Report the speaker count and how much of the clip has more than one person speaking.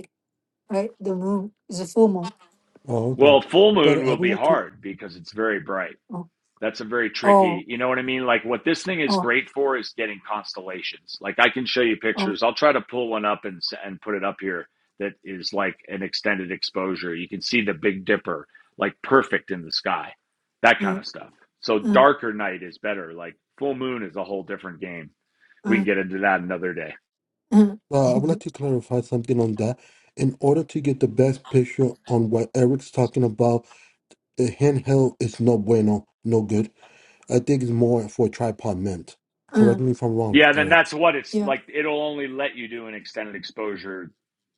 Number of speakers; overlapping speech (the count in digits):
3, about 7%